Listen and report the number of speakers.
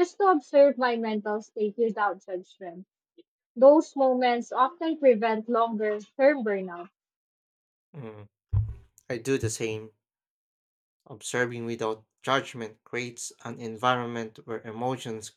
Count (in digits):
2